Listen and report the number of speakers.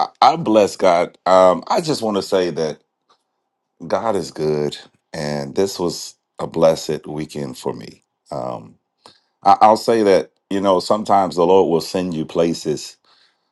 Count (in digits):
1